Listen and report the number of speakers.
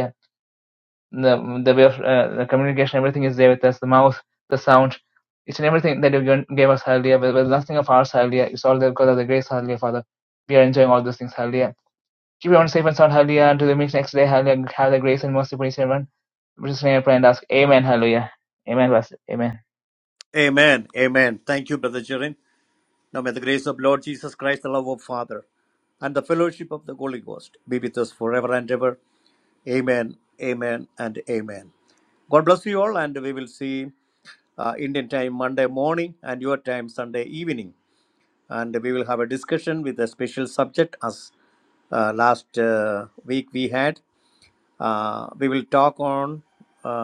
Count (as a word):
two